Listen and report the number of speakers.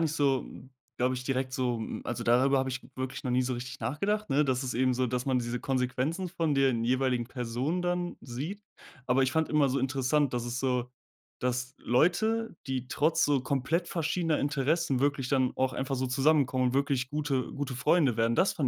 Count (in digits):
1